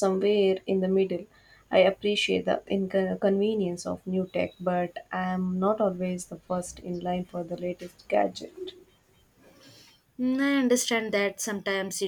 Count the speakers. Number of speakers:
2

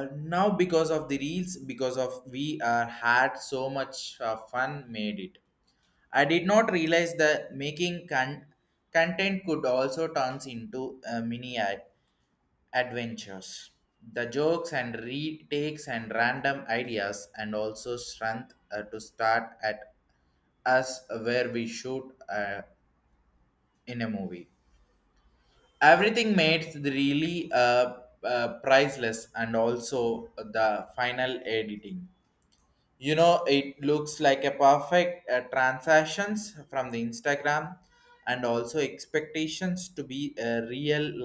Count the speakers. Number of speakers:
1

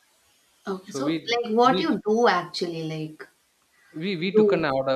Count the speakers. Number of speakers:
2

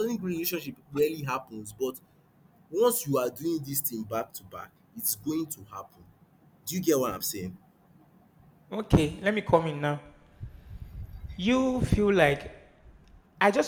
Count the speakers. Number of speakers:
2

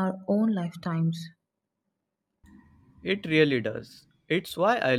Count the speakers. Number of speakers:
2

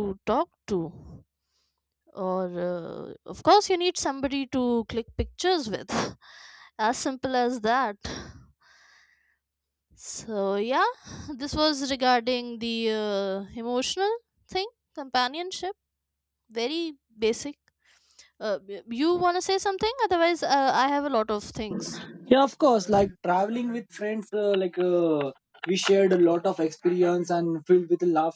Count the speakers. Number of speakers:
2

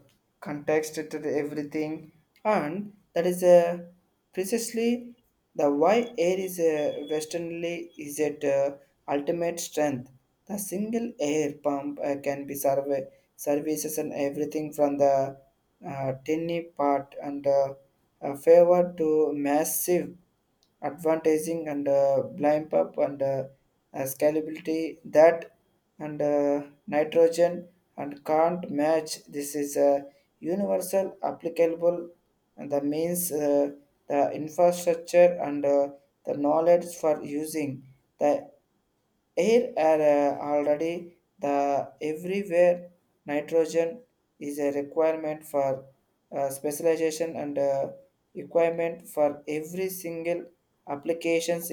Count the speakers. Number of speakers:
1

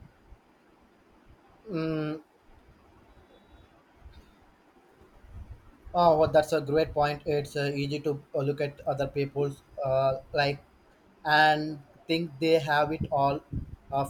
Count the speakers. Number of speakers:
1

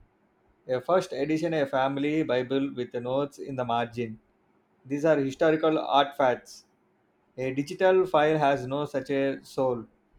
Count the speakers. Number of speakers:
1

